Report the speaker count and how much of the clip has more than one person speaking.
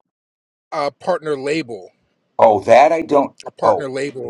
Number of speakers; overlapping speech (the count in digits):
2, about 5%